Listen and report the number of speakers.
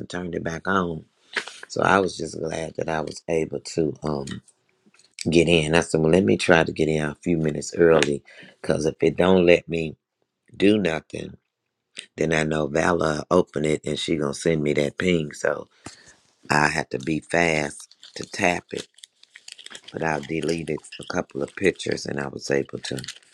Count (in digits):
1